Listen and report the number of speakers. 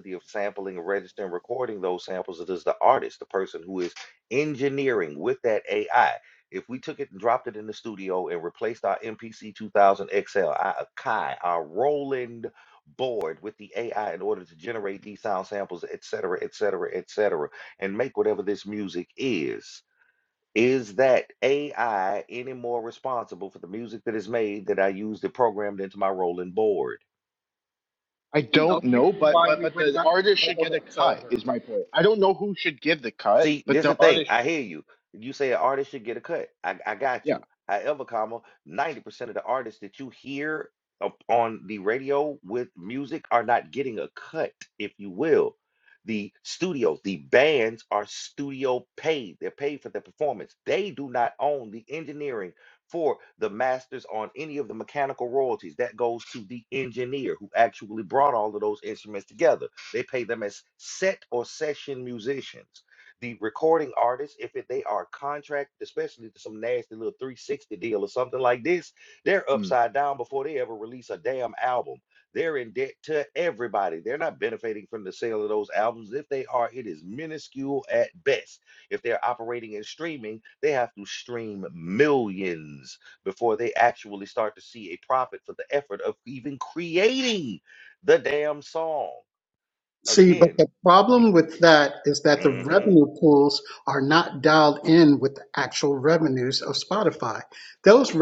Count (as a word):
three